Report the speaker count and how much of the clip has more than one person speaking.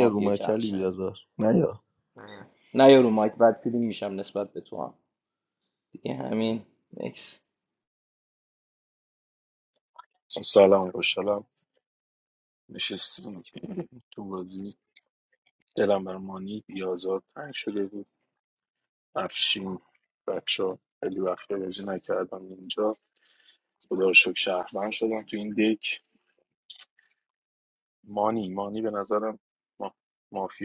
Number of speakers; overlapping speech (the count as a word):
three, about 3%